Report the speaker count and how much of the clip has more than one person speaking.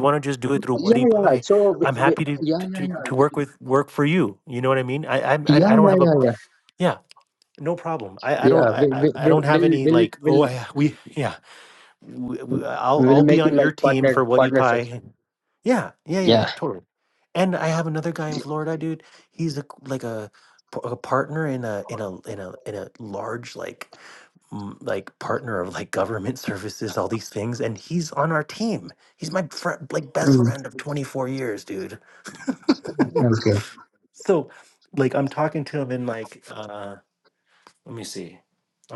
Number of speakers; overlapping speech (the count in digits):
2, about 18%